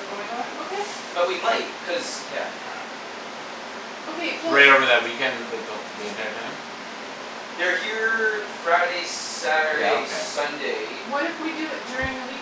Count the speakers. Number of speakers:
three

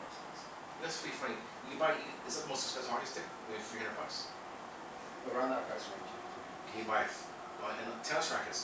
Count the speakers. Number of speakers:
two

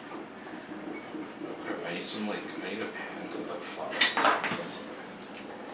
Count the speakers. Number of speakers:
one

